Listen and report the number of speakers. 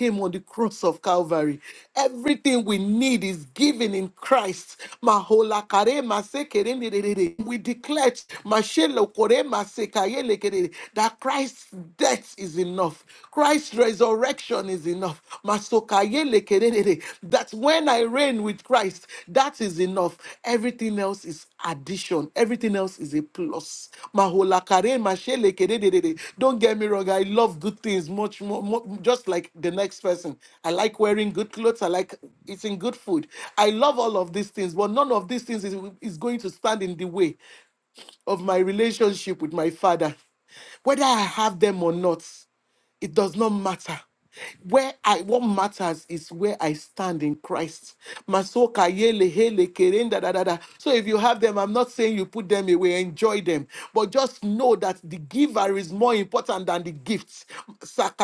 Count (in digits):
1